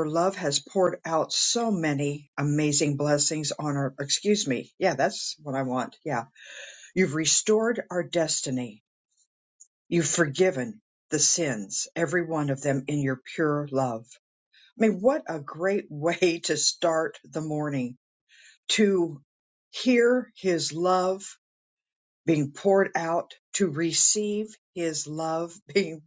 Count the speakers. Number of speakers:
one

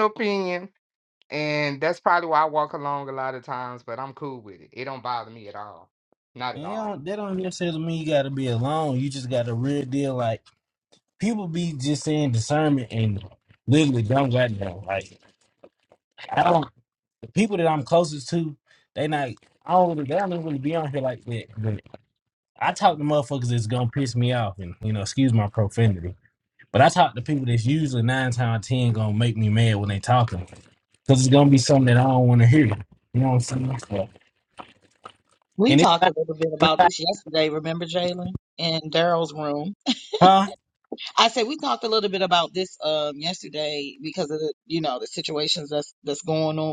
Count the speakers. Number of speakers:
three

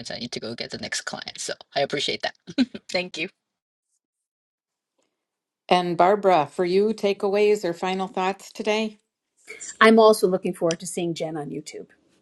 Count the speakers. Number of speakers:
three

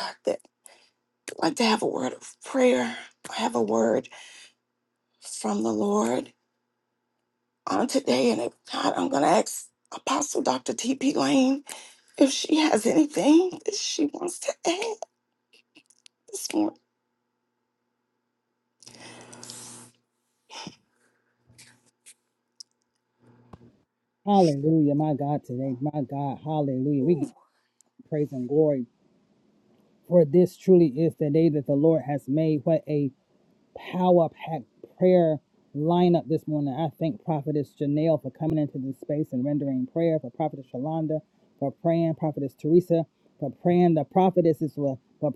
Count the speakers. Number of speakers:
two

